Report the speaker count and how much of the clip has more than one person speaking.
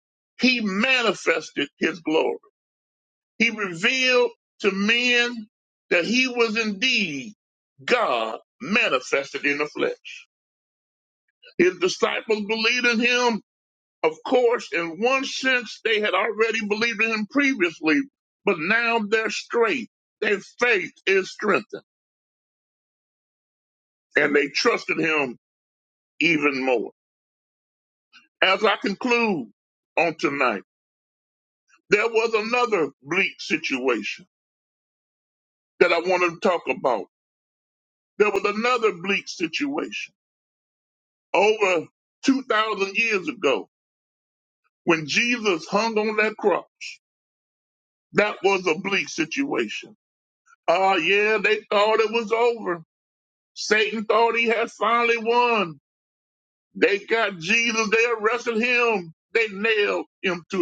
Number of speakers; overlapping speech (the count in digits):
1, no overlap